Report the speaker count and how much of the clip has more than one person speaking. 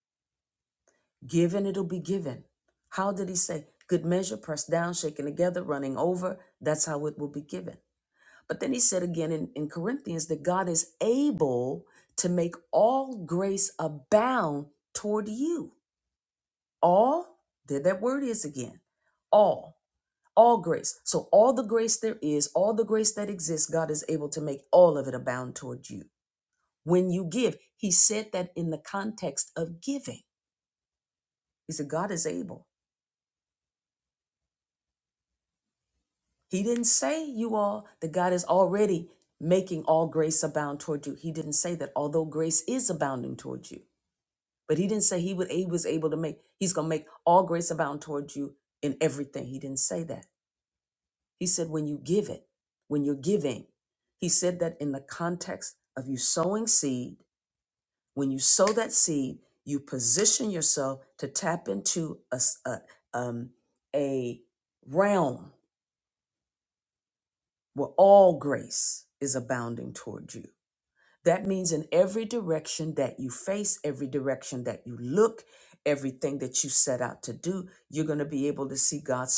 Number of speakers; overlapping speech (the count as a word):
one, no overlap